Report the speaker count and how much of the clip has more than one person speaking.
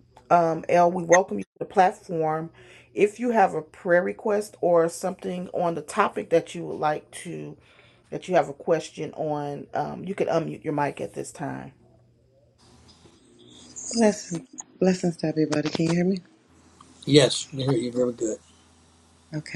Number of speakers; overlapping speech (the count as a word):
three, no overlap